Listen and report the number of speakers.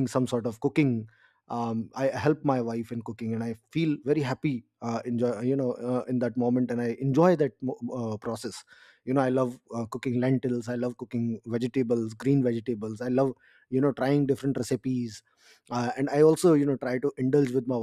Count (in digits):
1